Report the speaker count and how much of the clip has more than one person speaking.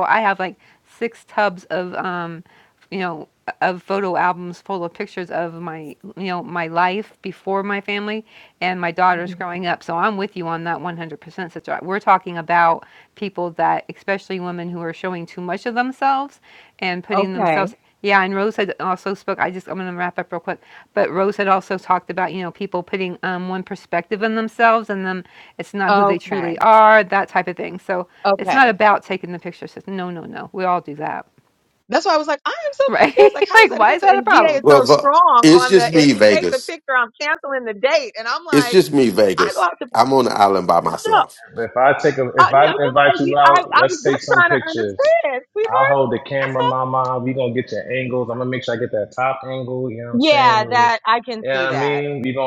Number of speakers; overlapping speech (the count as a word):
four, about 19%